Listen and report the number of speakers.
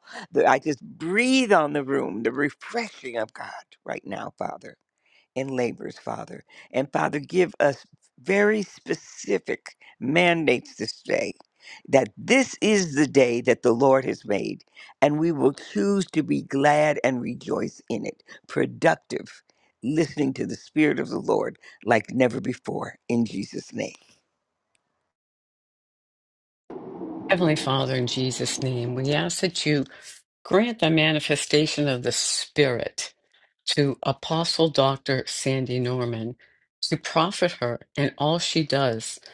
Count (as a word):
two